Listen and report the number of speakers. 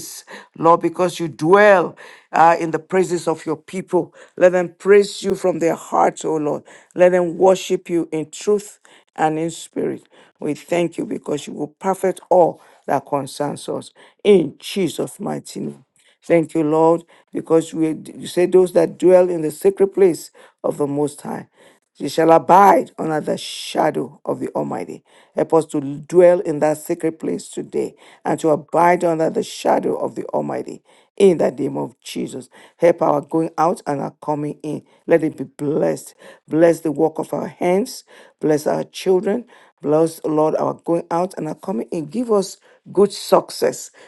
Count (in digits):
1